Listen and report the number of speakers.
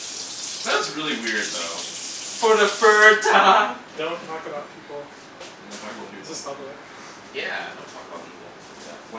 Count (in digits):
4